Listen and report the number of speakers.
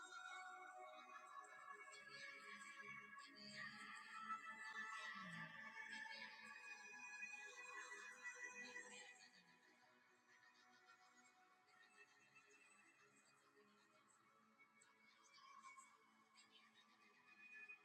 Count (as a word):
zero